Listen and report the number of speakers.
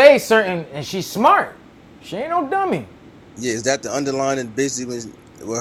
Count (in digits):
2